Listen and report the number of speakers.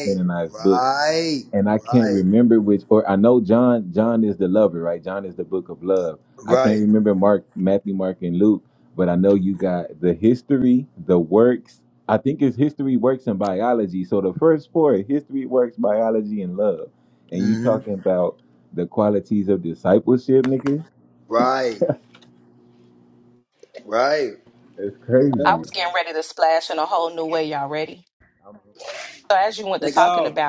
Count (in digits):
3